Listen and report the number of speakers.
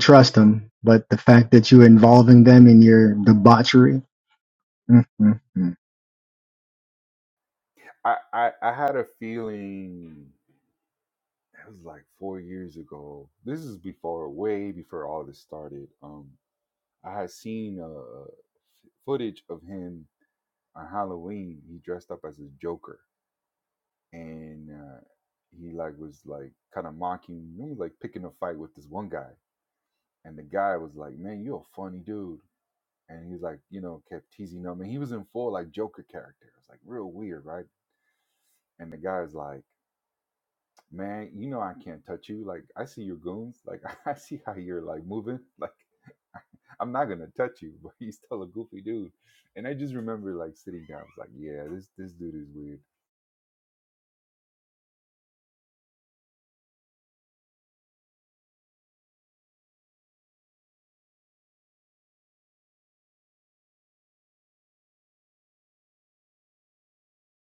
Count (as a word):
two